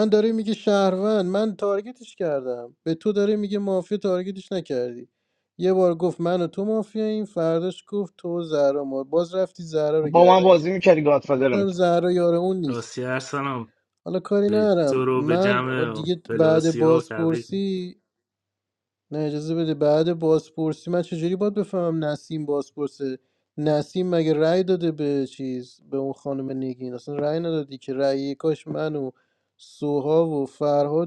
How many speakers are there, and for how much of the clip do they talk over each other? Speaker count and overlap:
3, about 12%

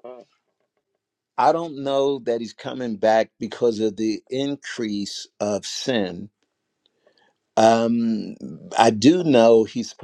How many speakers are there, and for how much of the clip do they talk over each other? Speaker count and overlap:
1, no overlap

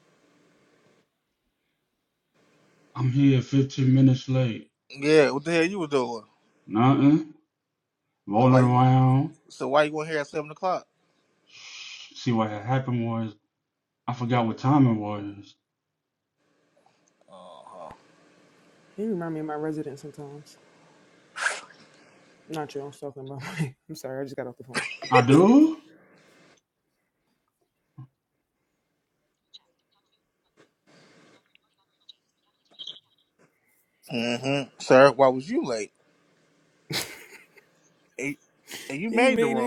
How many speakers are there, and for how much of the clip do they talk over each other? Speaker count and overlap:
3, about 2%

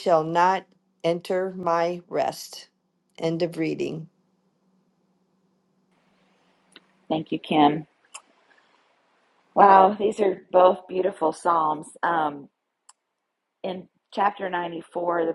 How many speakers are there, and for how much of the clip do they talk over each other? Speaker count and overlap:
2, no overlap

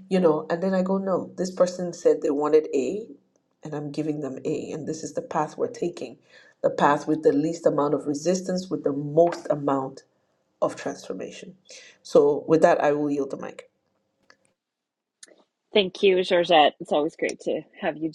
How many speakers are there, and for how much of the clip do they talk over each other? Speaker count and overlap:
2, no overlap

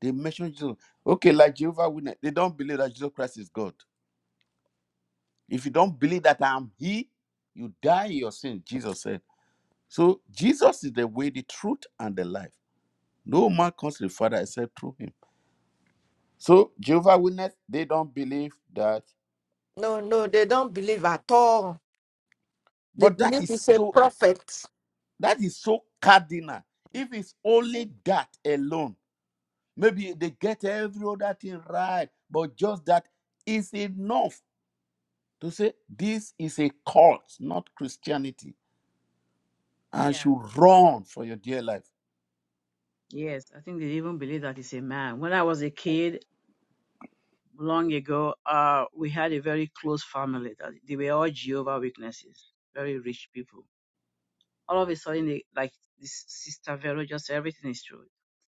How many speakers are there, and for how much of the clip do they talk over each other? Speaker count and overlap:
3, about 2%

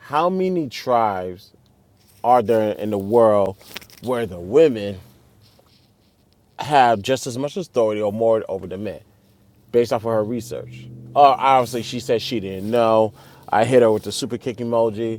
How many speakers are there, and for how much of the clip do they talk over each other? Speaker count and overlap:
1, no overlap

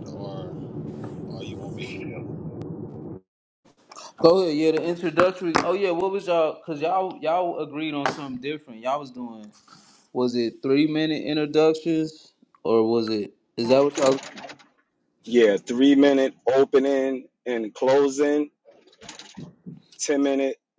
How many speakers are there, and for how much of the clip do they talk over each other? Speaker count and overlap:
3, no overlap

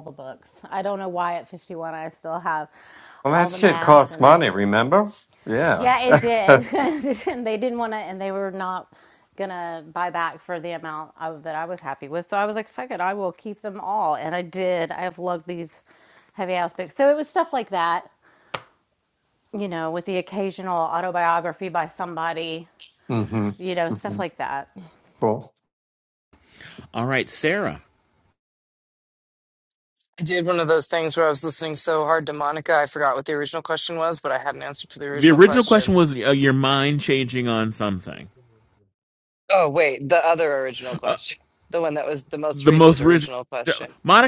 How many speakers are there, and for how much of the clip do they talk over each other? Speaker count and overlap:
4, about 7%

